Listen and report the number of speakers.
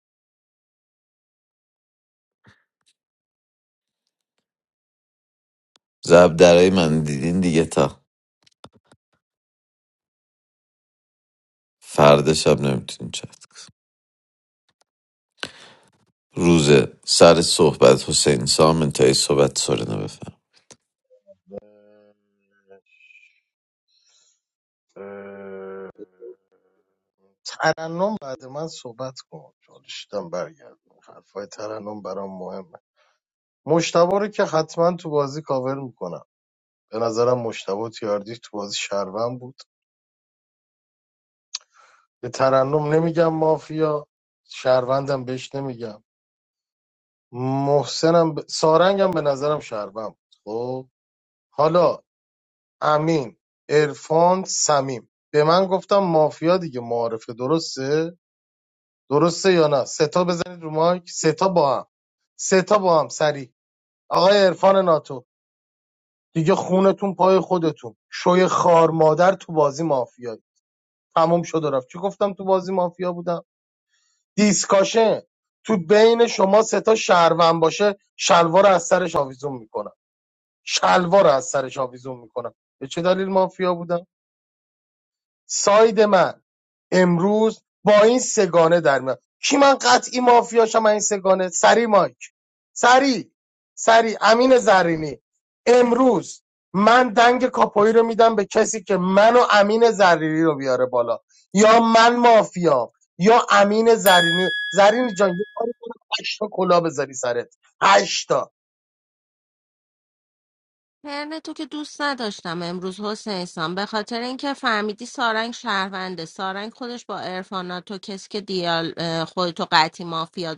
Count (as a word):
three